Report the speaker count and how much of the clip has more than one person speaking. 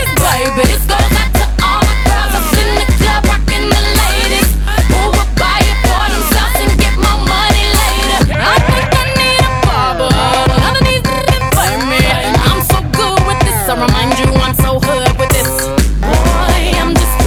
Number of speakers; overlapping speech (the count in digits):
1, no overlap